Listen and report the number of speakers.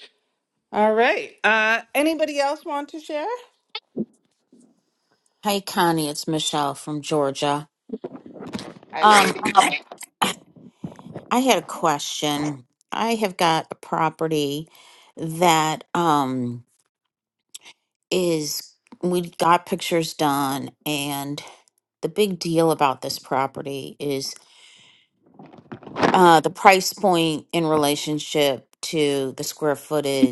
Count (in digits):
2